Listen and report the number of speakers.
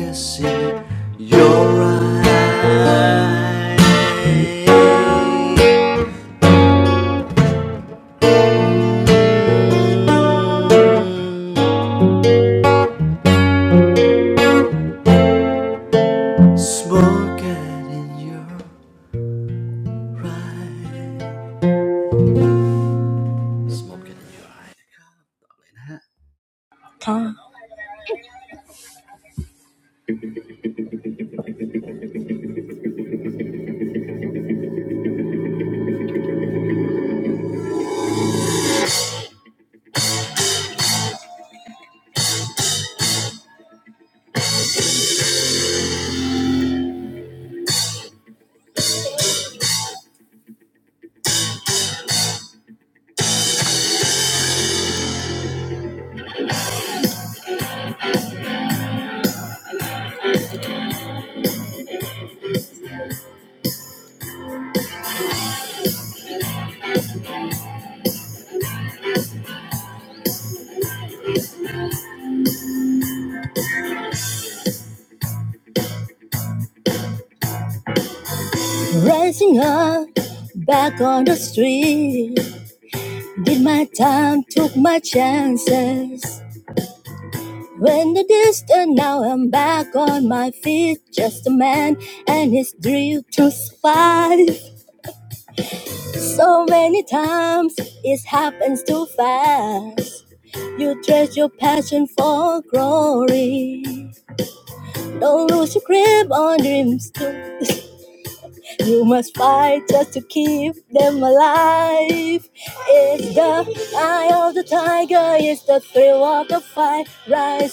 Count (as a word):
two